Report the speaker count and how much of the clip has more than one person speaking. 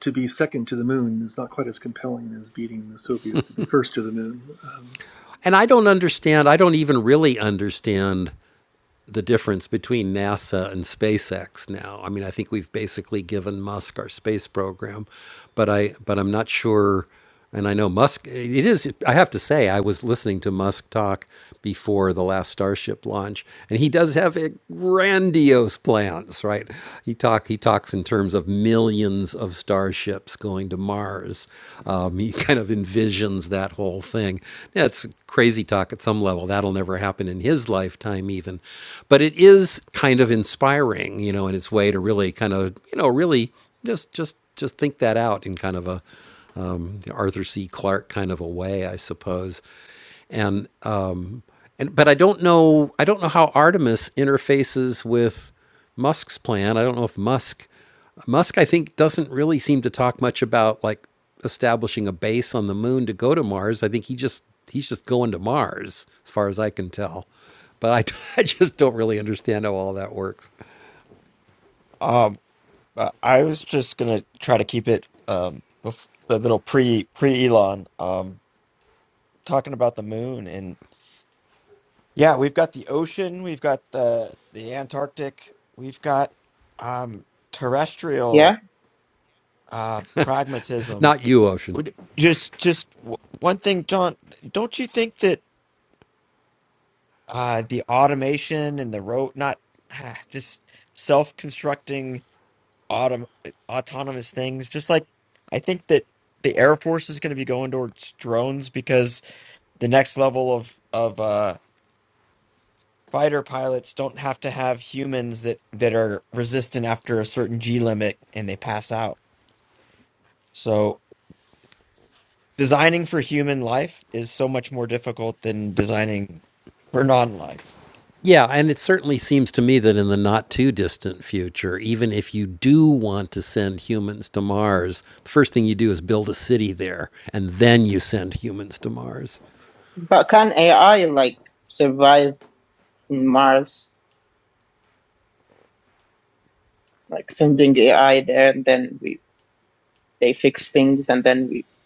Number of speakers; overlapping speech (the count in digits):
4, under 1%